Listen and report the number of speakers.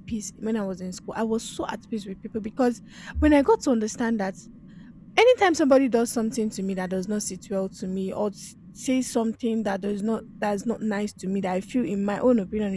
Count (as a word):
one